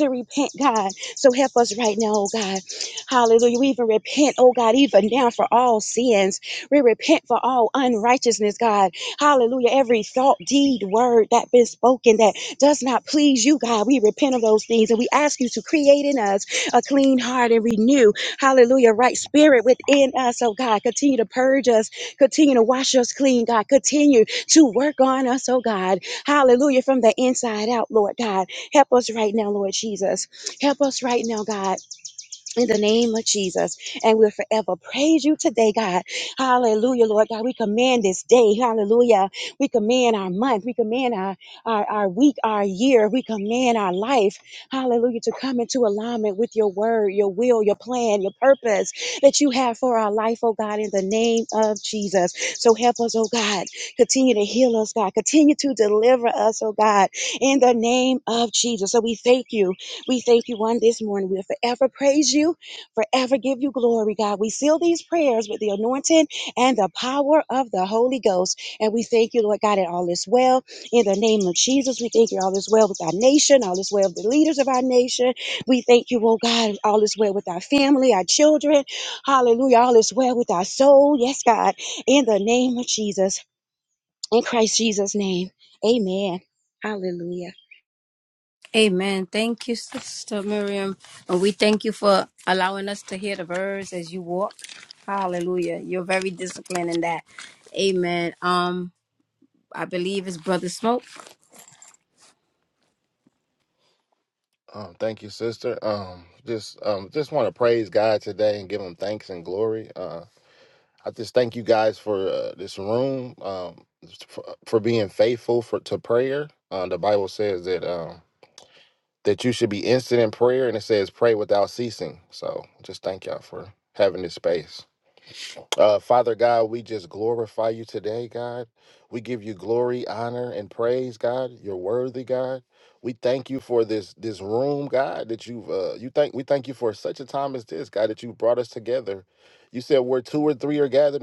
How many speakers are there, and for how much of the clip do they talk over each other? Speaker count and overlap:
3, no overlap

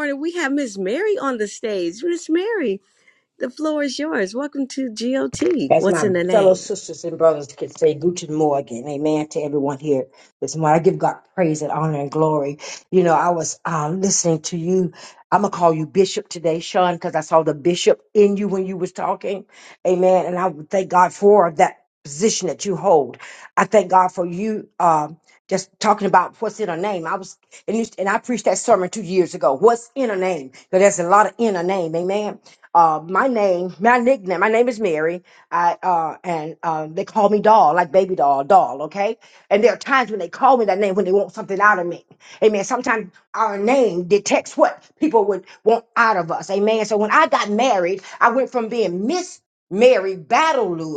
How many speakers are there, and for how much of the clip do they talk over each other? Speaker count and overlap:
2, about 2%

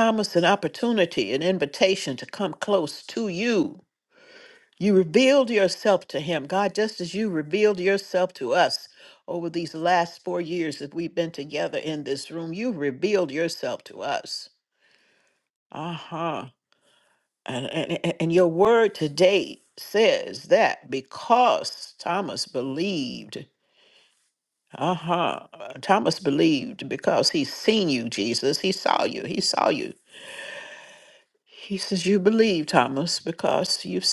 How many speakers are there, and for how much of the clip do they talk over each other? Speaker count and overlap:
1, no overlap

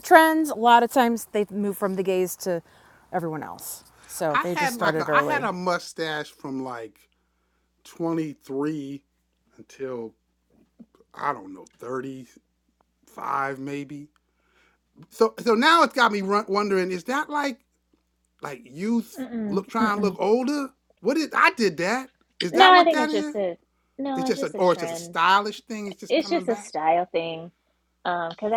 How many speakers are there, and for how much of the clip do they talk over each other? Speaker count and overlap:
3, about 15%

